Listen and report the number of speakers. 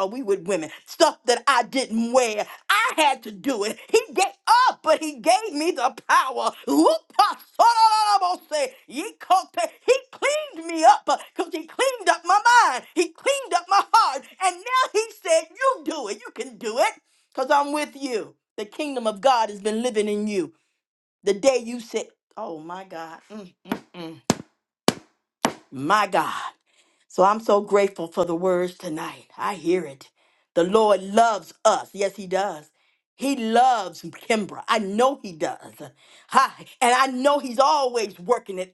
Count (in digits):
1